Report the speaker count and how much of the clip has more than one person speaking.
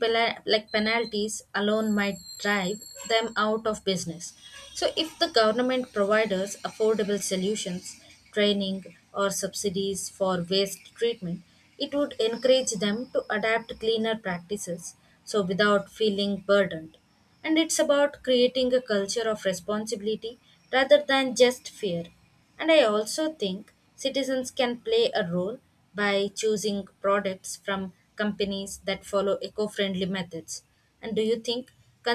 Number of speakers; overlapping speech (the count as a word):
one, no overlap